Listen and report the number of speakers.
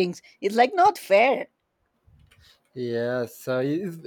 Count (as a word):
two